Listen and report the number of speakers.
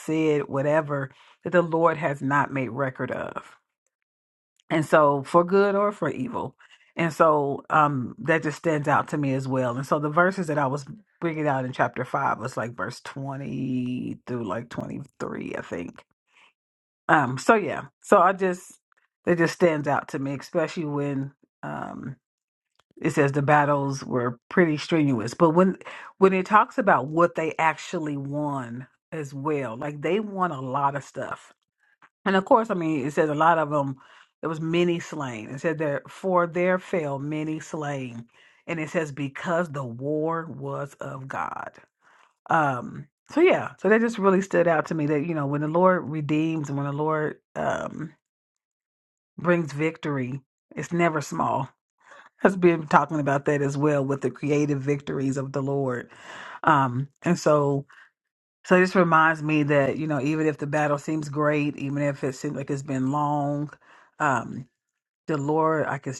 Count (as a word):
one